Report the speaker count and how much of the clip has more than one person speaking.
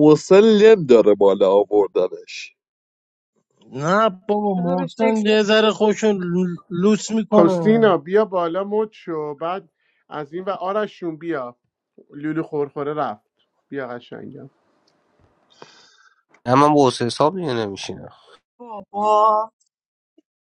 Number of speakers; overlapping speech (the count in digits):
5, about 7%